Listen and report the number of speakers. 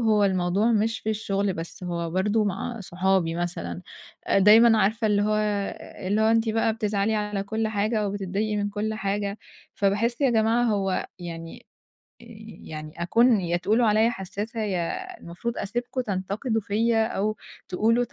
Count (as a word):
one